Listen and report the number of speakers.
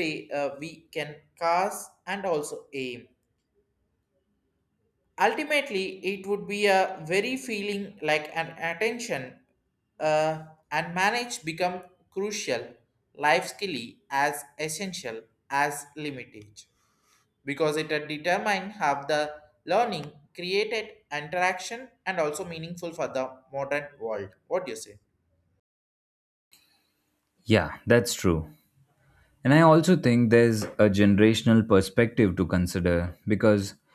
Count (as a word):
two